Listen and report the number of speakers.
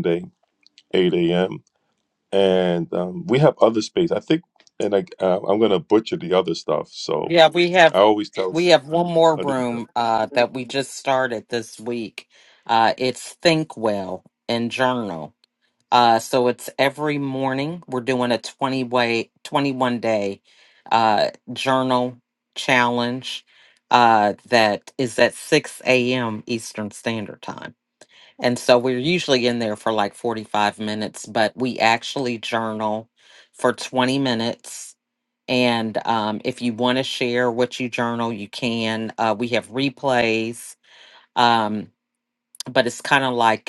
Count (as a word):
two